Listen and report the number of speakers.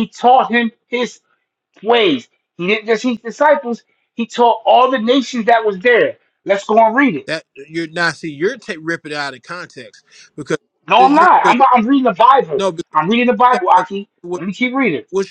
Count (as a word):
two